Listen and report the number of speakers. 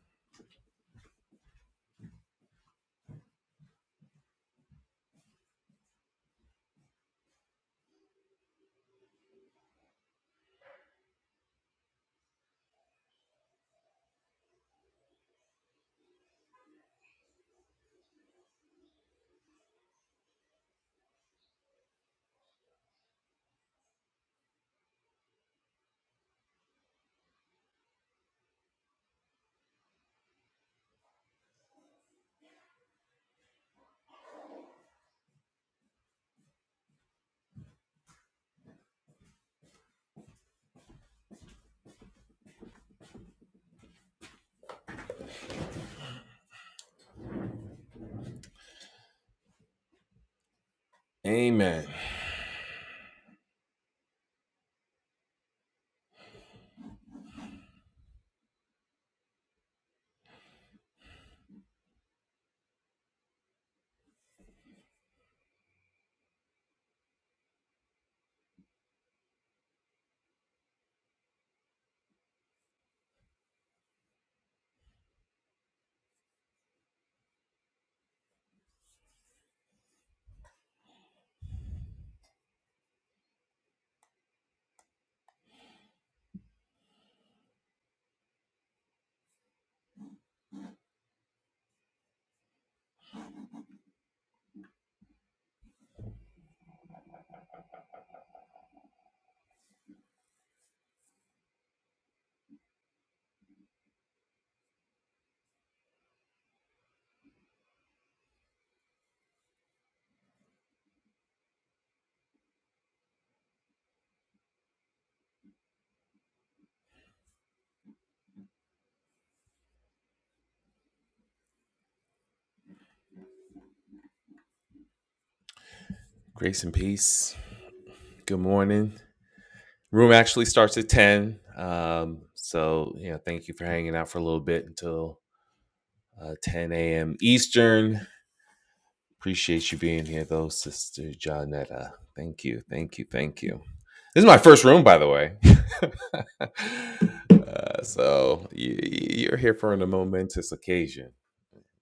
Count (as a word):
one